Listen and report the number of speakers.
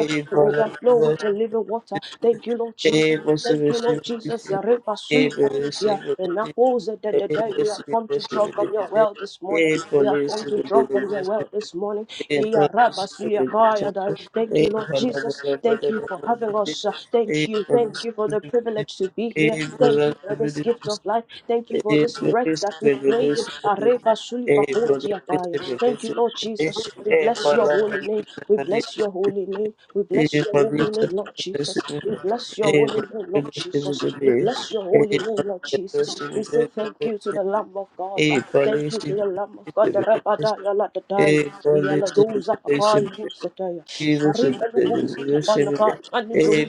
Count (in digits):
2